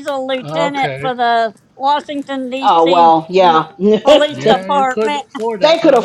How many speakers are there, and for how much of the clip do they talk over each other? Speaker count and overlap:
3, about 40%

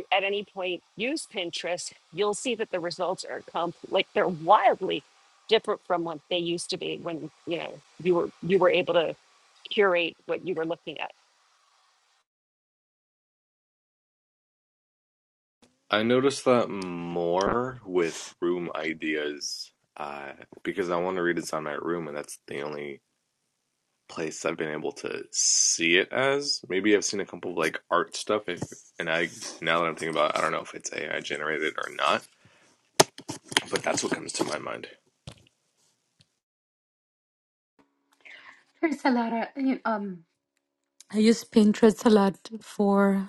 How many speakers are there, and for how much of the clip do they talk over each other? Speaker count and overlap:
3, no overlap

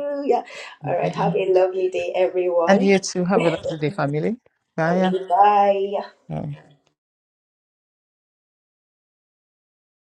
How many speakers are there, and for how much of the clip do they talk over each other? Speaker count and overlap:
2, about 11%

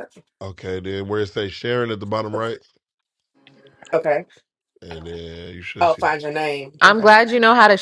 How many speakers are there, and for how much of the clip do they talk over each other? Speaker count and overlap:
3, about 9%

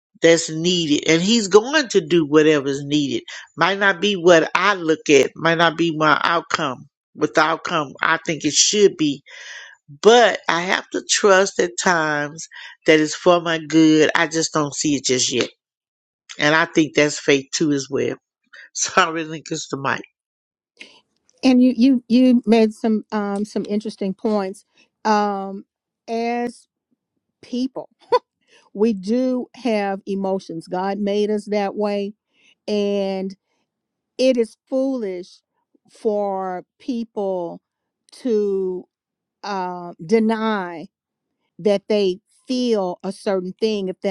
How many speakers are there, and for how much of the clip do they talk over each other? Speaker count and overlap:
2, no overlap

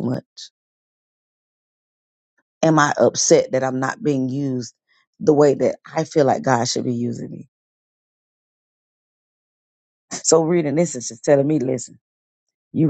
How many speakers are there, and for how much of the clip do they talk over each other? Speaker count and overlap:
1, no overlap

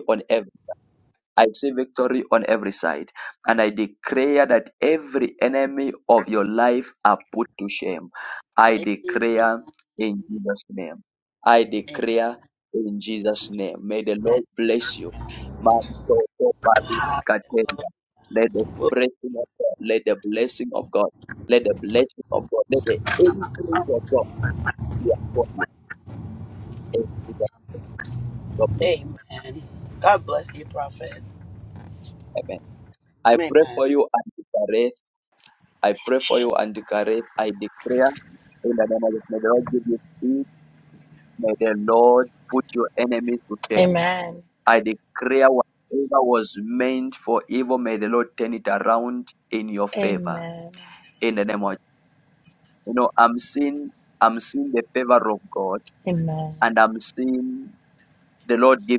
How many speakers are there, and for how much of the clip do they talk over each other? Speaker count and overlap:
3, about 4%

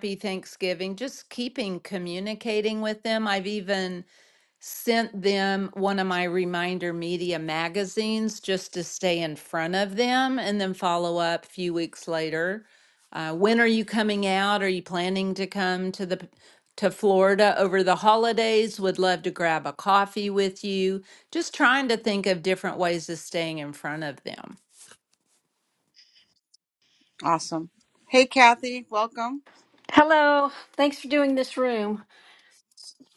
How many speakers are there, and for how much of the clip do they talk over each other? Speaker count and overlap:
3, no overlap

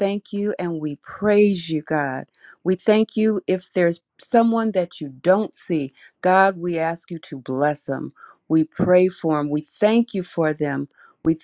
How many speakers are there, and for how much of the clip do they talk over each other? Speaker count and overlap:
1, no overlap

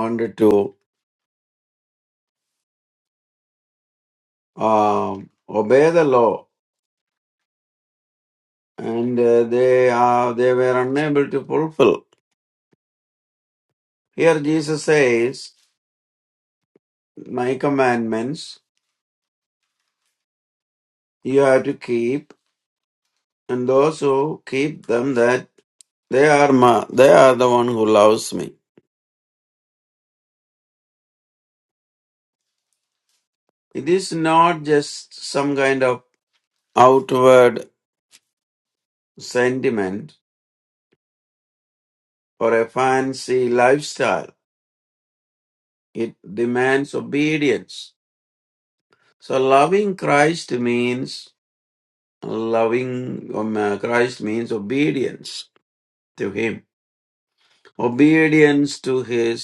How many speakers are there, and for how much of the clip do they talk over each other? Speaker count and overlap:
1, no overlap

